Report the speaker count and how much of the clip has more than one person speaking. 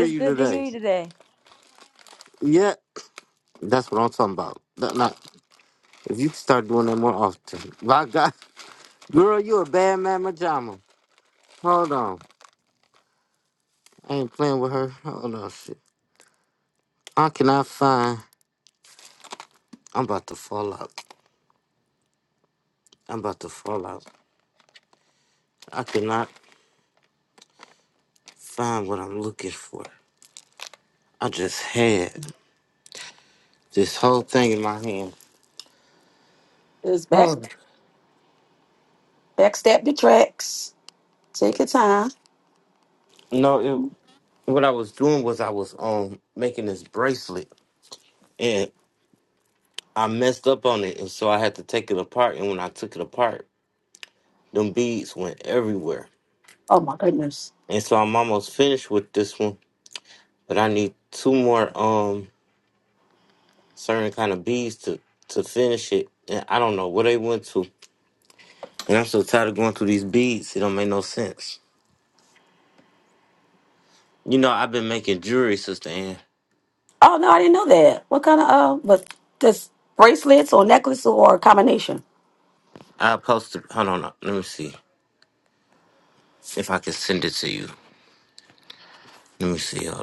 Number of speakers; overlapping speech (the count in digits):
3, about 1%